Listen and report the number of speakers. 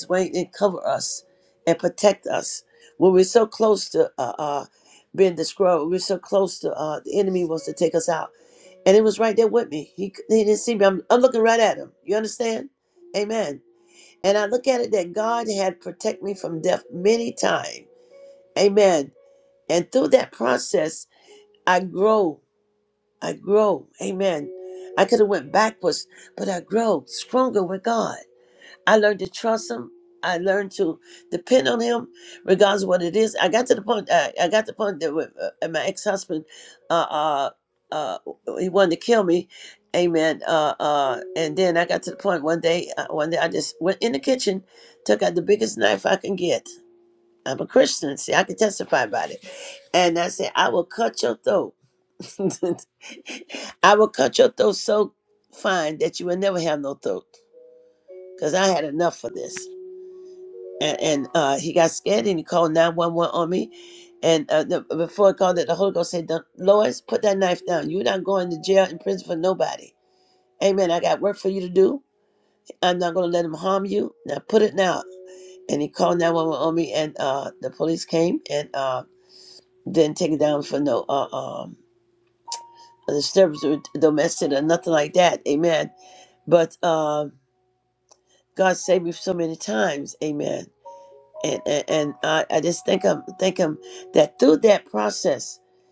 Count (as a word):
one